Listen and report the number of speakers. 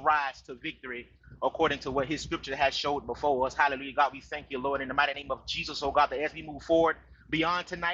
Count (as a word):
one